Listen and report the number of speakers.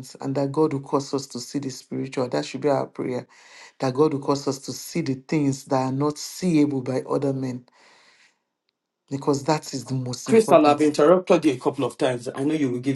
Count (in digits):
2